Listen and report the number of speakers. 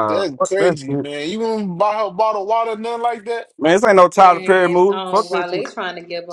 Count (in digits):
3